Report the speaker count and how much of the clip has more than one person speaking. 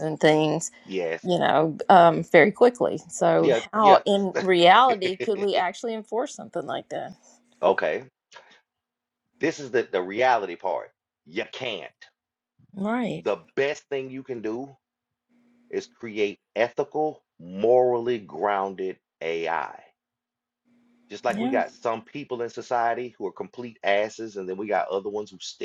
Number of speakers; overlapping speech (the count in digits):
2, about 4%